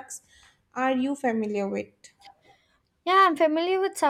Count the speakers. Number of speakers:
two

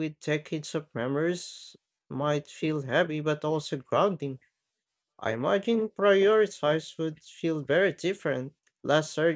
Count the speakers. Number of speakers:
one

